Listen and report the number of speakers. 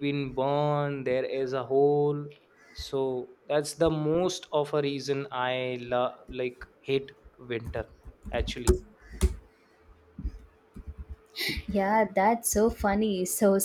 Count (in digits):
2